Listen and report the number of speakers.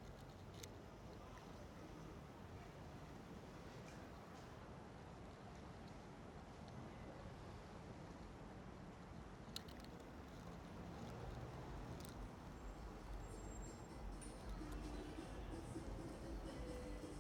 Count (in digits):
0